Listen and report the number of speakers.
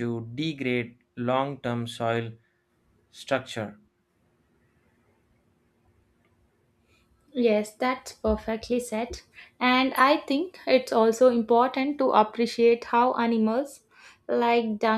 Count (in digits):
2